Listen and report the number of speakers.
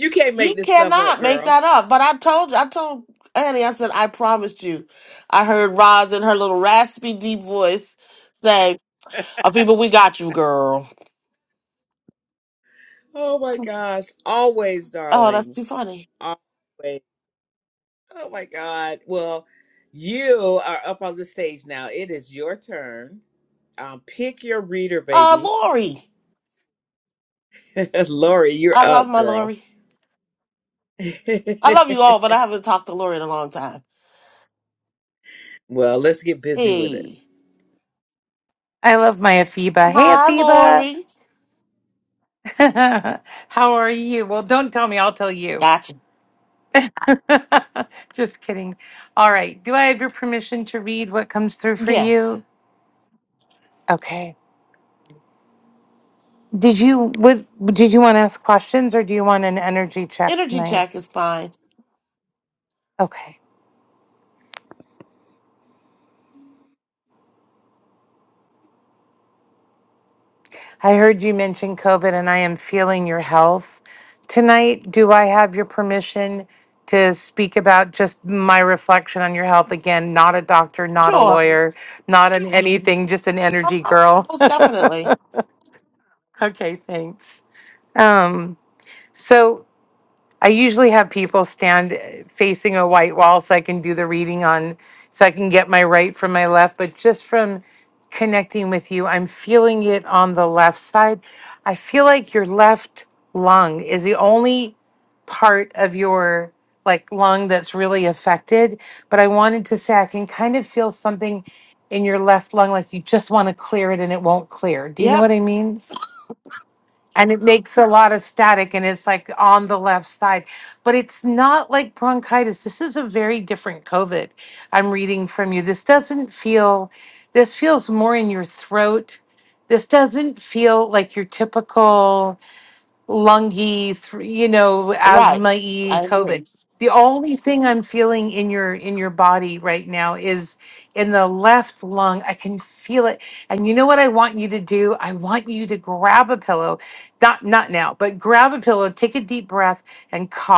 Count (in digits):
3